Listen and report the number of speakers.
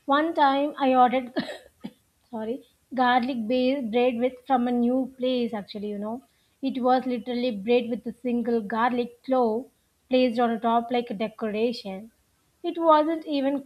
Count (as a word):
one